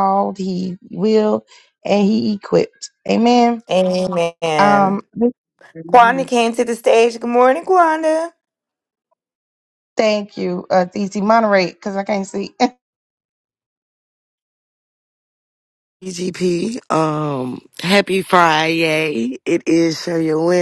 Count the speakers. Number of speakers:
3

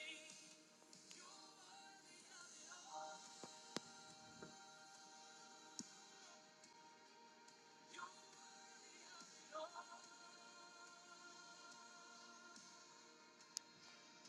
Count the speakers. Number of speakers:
0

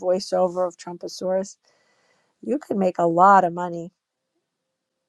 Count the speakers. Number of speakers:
1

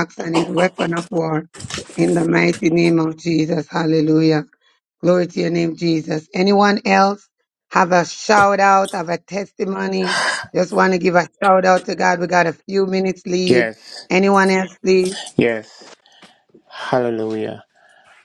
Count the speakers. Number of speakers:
2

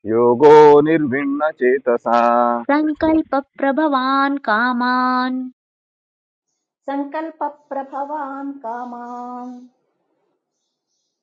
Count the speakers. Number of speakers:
3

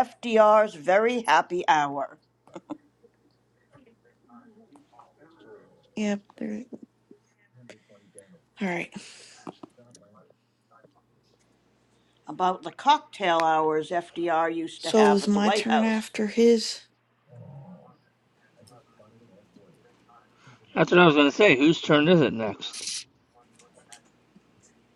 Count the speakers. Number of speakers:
3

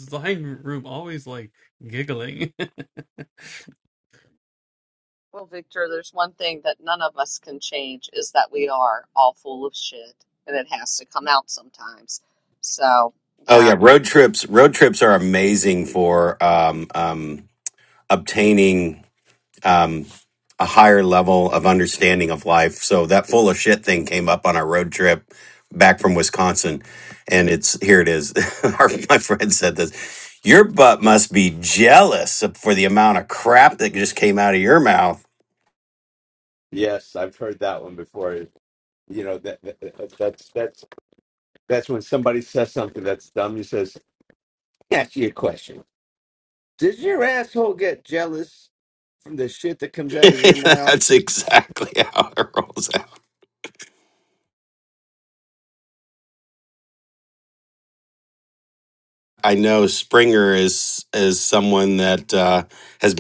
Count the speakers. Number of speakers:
4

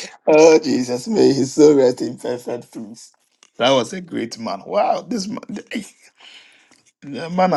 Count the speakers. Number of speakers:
1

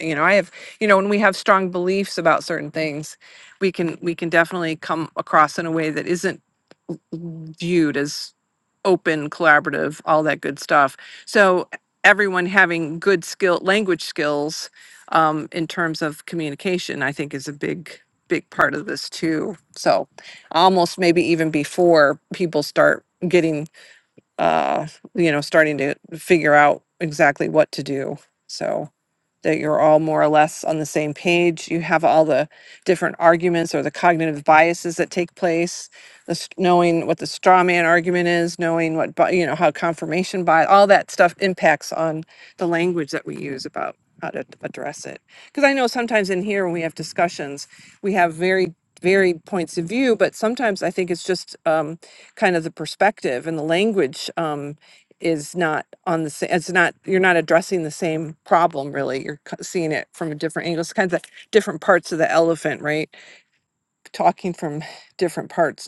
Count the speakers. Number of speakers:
1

